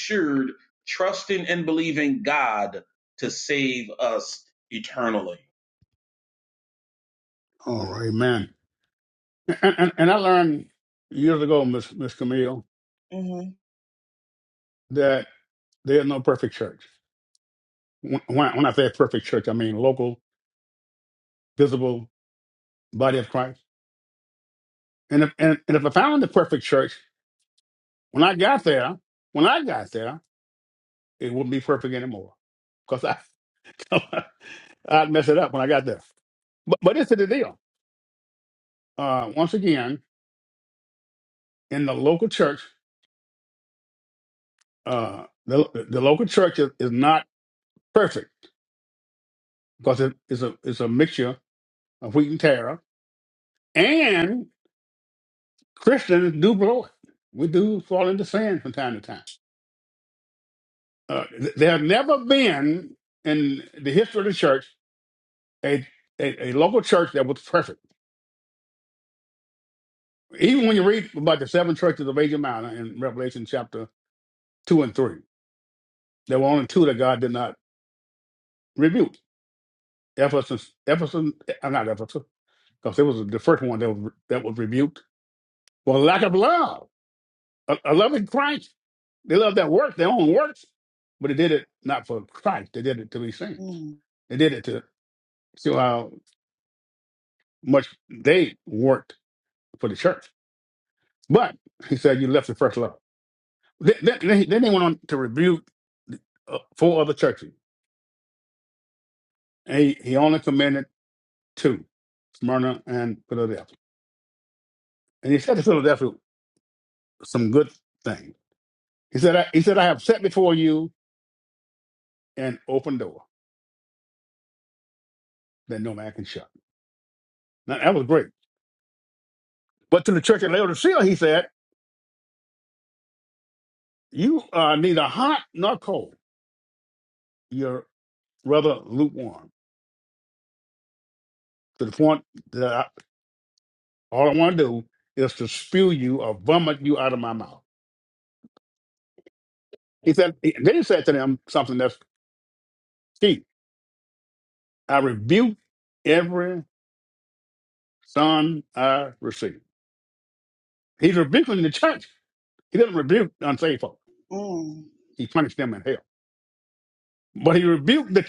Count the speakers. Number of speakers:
3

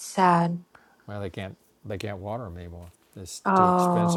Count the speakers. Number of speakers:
2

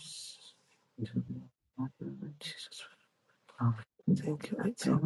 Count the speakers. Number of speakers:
2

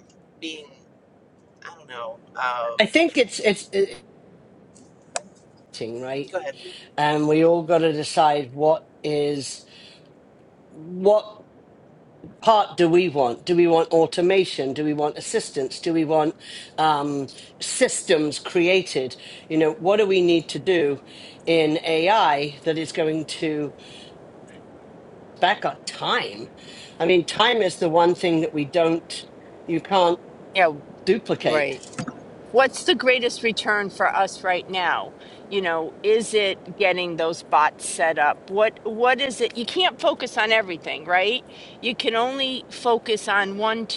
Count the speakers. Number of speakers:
3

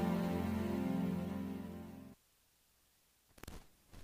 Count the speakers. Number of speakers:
0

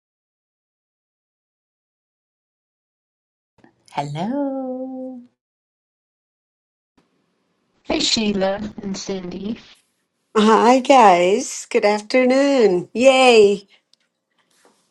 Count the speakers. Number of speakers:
3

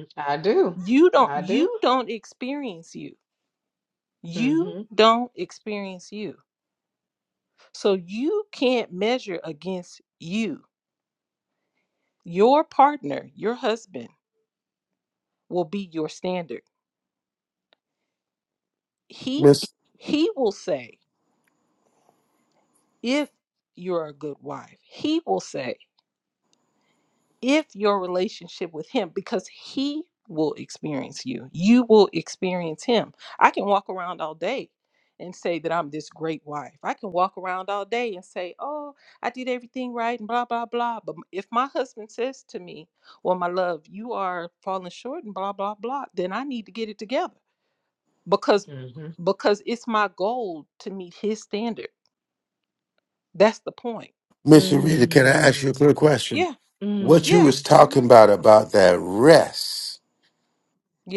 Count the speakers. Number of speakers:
3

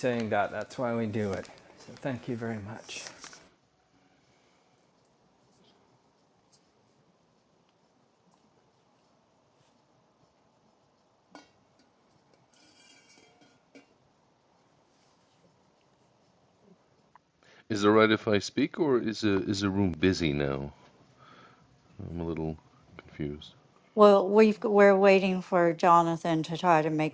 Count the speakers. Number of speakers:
3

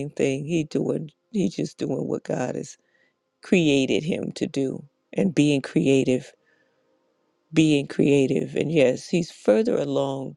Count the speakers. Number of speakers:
1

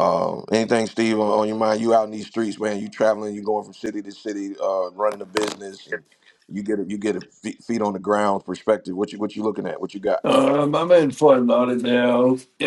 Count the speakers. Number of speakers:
2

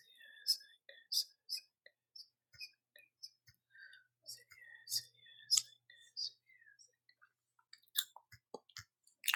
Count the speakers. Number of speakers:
0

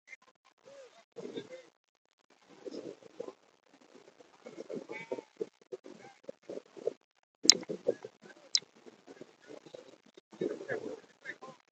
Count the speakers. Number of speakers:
0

